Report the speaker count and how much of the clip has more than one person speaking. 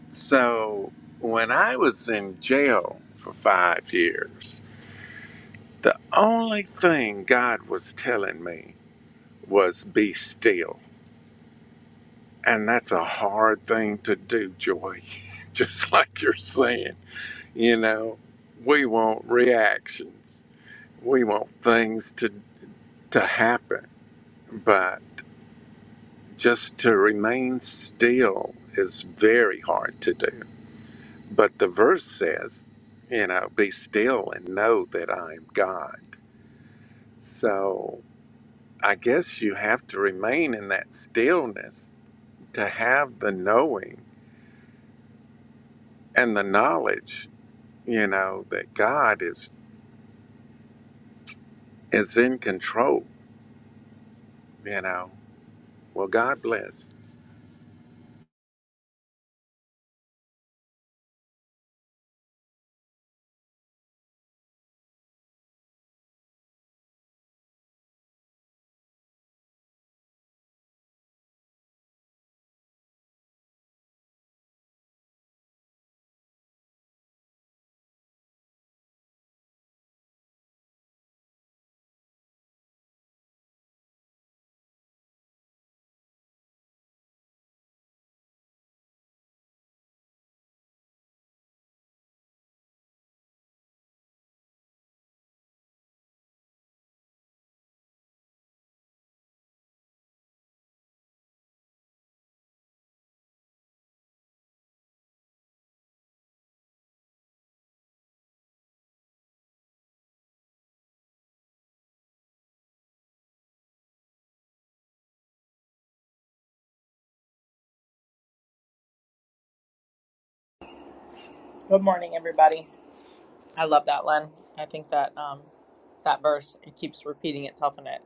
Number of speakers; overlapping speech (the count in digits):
2, no overlap